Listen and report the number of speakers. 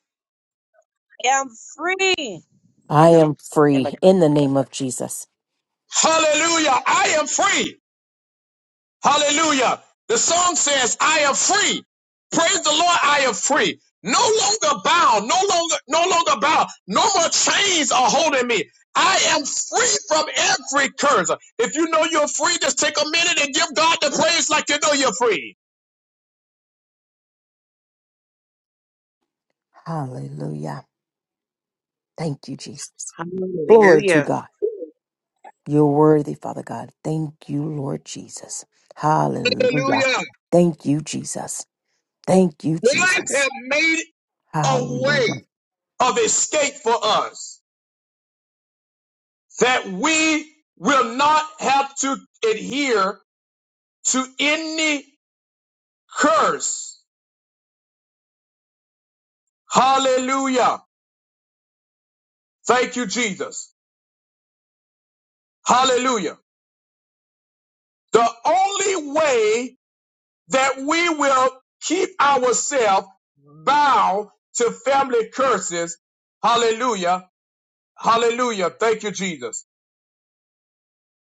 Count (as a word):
four